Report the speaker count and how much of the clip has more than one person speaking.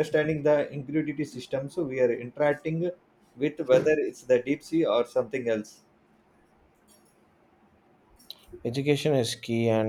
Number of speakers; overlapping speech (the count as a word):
two, no overlap